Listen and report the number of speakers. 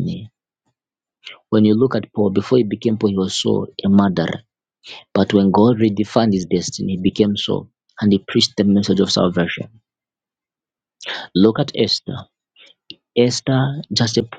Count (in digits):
1